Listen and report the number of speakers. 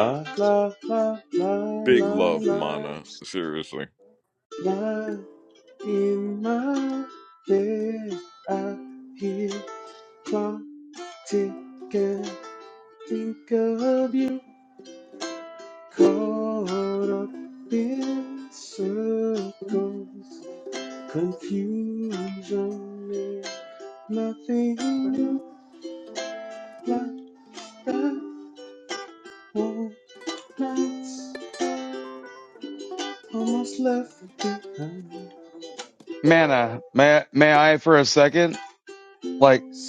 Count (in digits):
3